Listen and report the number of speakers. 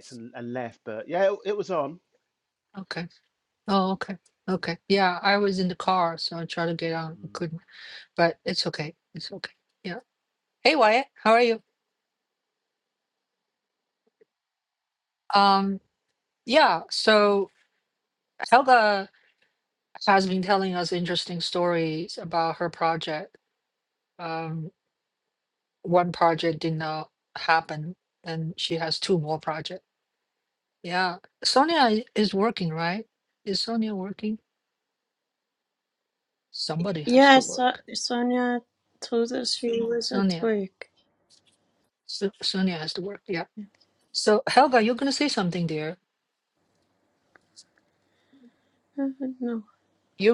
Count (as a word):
three